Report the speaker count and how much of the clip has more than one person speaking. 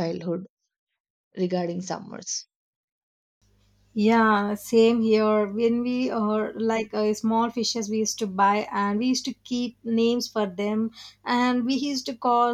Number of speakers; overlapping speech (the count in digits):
2, no overlap